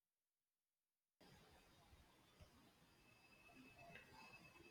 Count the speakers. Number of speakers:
0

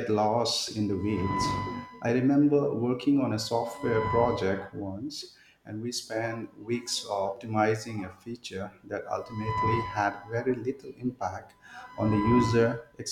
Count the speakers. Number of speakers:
1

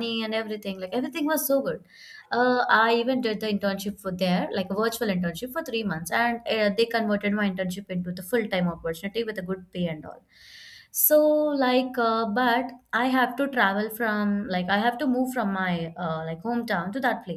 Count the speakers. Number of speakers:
1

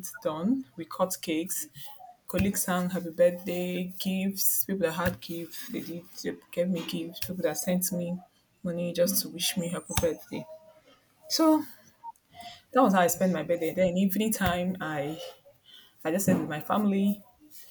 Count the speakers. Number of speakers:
1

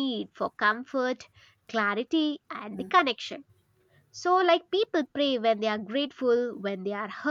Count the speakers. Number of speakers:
1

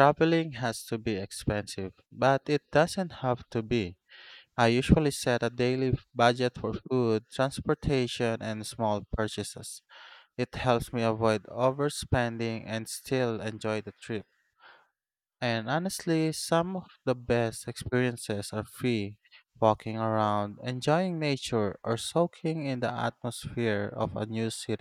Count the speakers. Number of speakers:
1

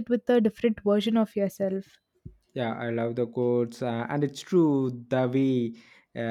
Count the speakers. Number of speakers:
2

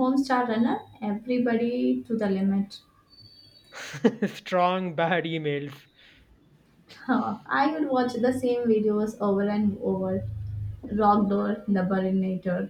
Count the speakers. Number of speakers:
2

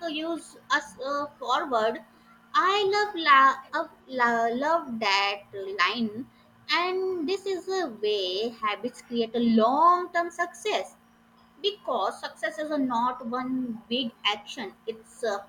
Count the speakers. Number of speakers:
1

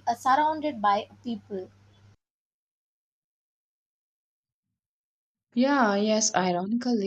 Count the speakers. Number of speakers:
2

